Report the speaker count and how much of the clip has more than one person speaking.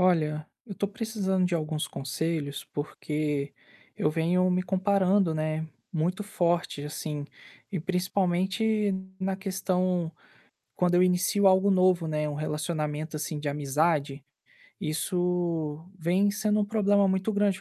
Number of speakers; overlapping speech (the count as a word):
one, no overlap